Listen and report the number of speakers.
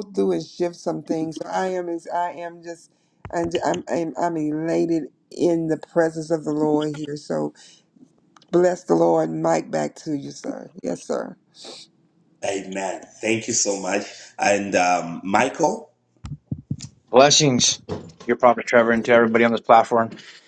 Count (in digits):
3